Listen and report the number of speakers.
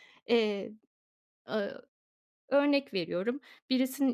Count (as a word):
one